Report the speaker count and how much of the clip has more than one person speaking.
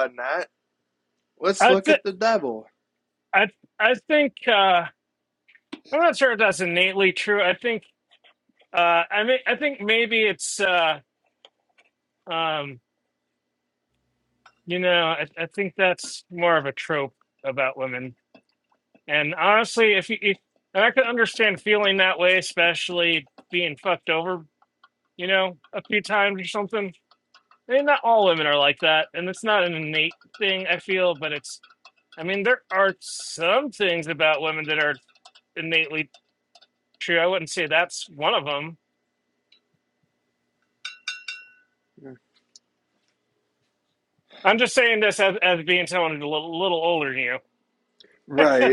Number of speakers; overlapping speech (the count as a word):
two, about 2%